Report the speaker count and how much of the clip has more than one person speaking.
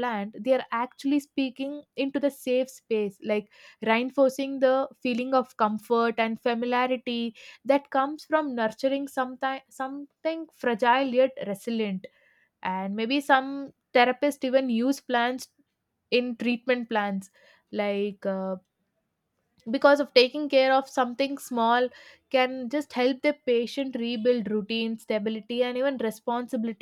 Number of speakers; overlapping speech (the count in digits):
1, no overlap